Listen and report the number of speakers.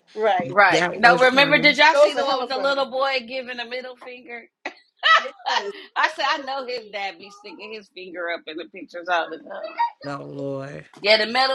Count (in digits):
3